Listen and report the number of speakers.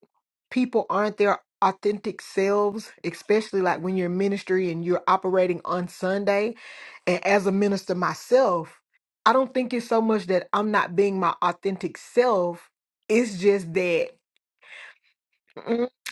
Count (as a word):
one